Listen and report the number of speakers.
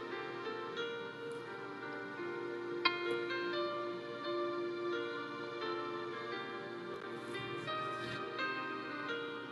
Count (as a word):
zero